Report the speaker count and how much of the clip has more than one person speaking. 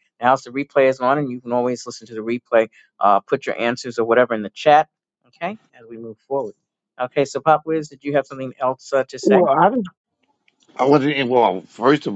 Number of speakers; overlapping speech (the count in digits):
2, about 2%